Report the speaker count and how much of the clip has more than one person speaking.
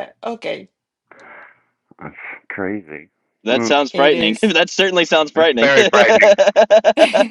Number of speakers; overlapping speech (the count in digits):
3, about 25%